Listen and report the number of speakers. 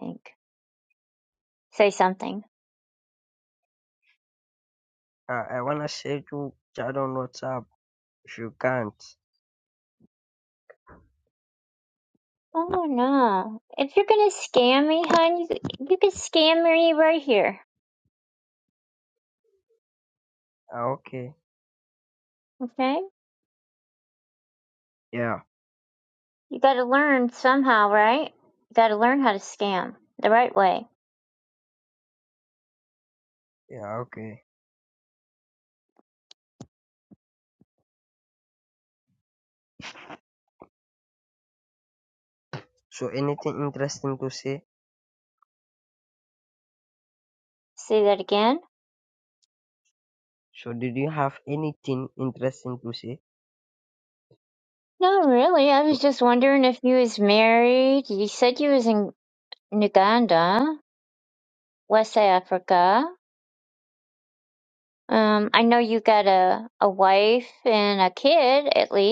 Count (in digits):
2